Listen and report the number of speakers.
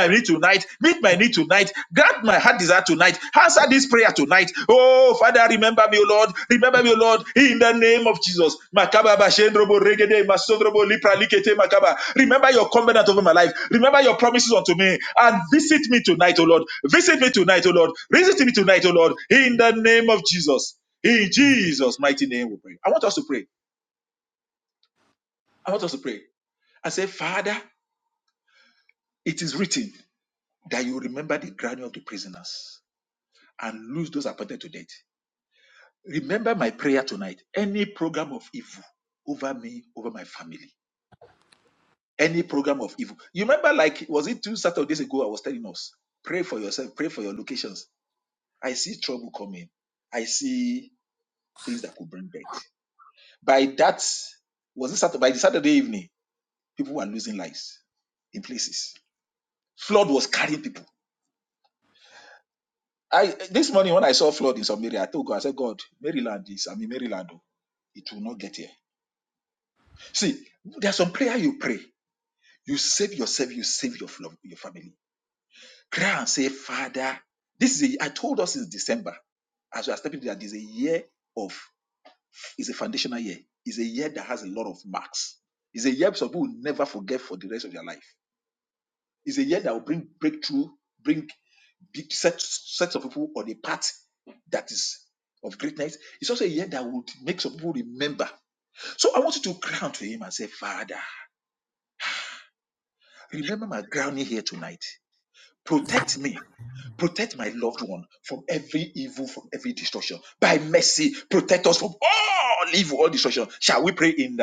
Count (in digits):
1